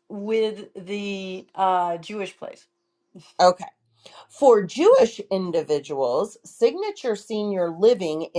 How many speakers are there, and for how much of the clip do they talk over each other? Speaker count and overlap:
2, no overlap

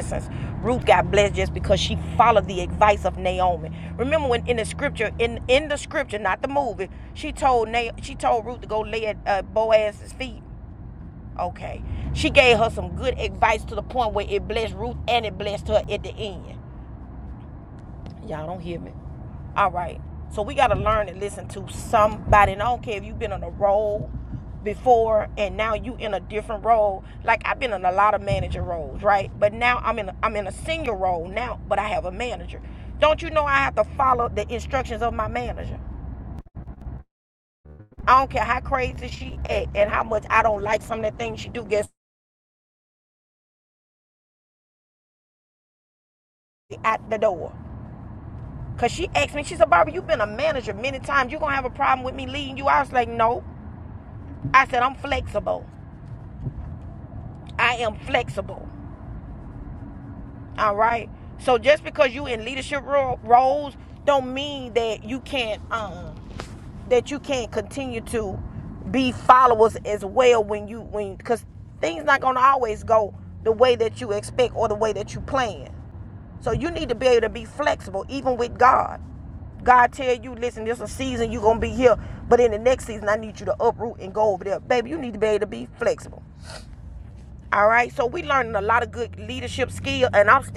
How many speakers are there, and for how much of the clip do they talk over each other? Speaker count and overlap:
1, no overlap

